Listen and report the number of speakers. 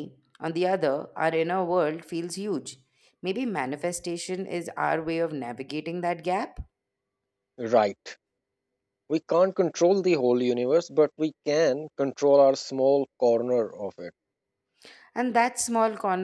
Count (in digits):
2